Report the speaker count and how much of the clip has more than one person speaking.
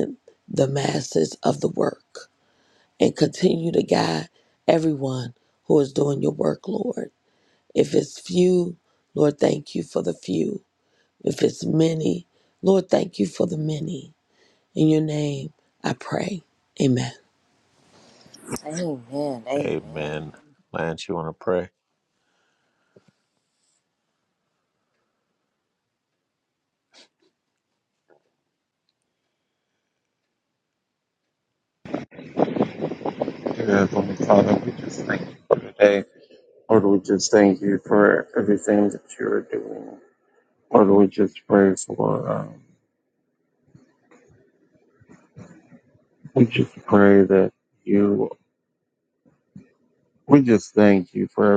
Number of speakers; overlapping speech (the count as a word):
four, under 1%